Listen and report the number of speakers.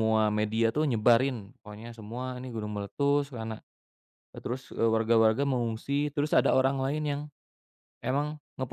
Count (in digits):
1